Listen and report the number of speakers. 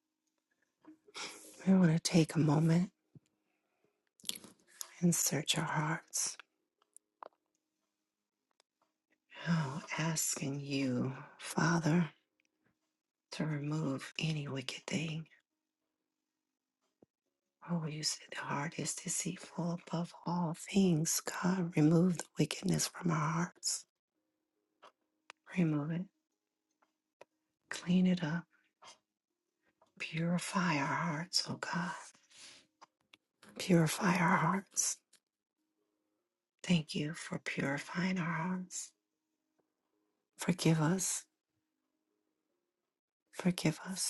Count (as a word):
one